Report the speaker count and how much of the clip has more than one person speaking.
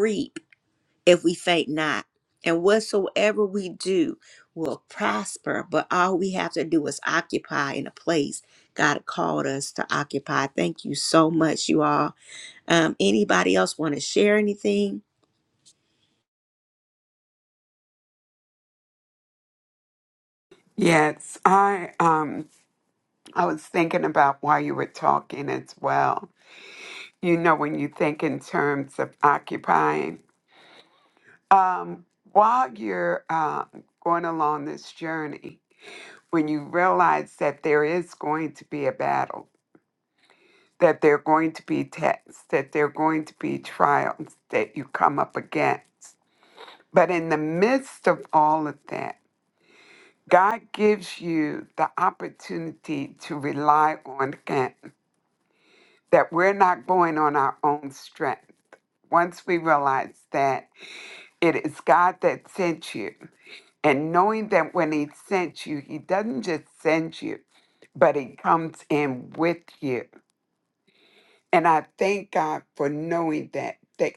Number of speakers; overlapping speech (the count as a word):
two, no overlap